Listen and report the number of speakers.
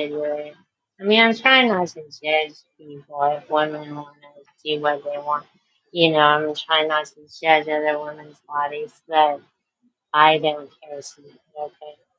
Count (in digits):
1